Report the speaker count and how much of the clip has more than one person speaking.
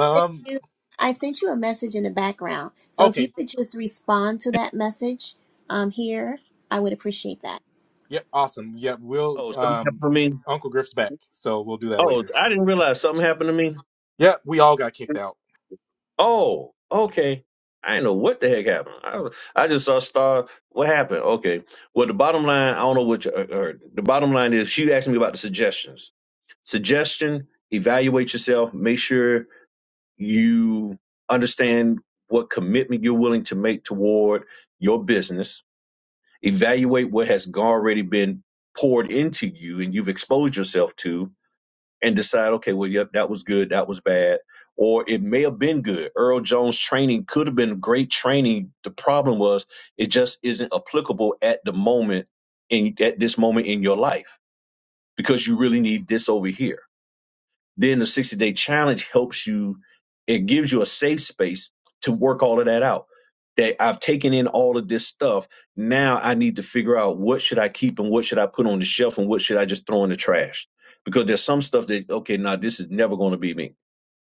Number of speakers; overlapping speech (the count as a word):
three, about 2%